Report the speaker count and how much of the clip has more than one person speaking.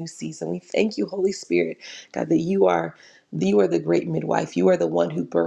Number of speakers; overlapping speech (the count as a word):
one, no overlap